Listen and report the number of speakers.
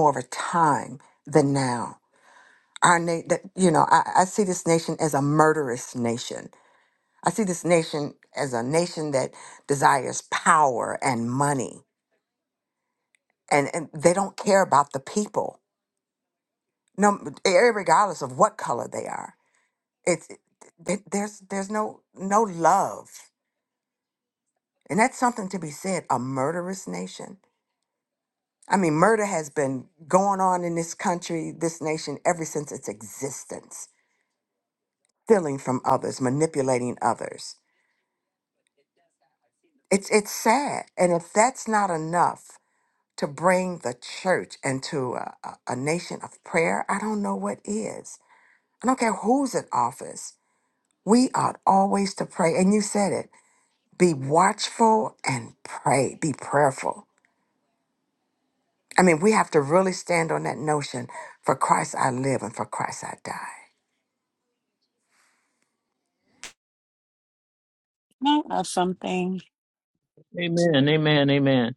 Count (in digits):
3